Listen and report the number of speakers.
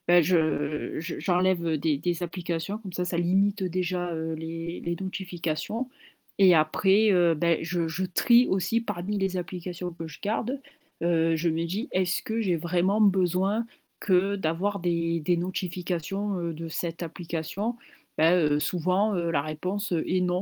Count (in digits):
1